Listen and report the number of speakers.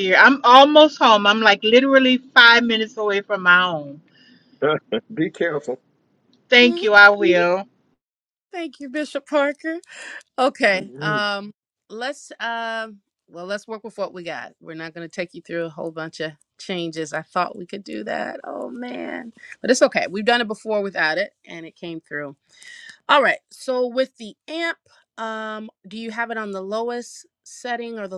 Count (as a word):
three